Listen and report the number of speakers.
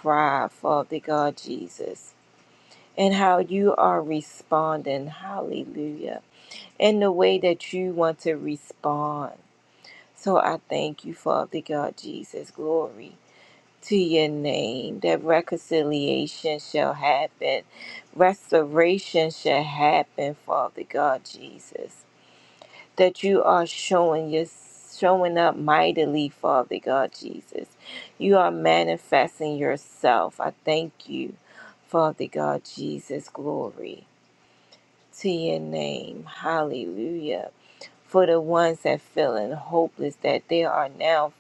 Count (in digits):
1